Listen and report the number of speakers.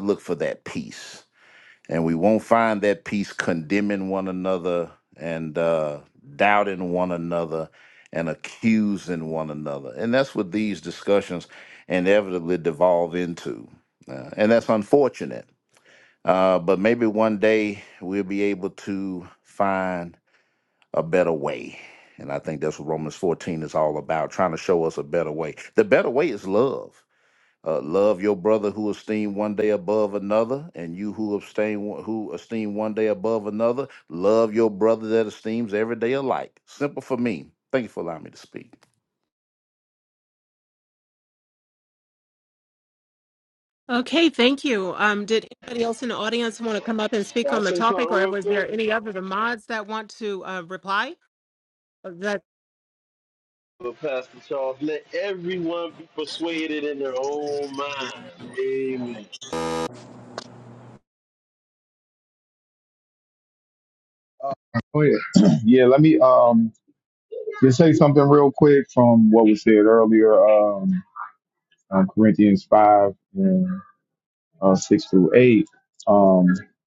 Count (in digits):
4